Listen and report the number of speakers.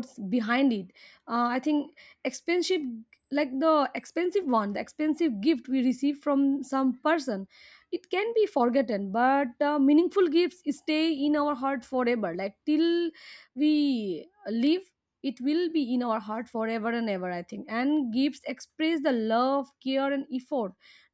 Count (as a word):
one